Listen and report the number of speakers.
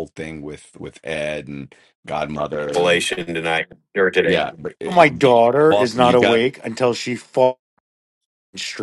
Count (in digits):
3